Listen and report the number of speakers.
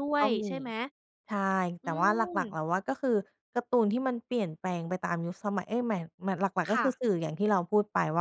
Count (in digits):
2